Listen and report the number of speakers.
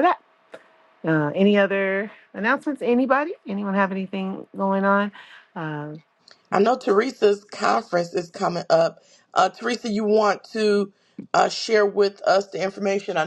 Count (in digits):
2